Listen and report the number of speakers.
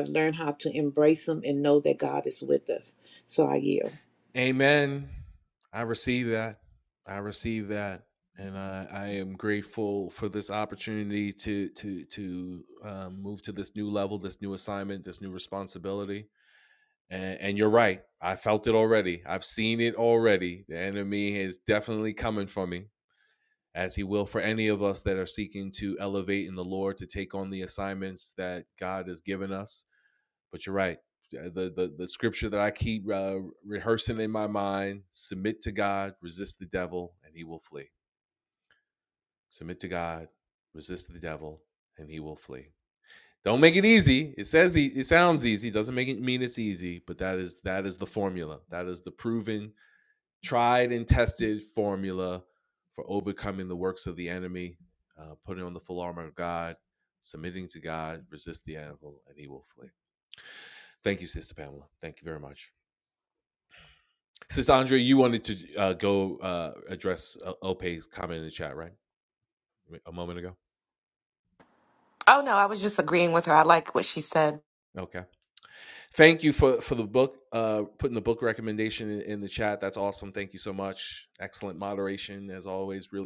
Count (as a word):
three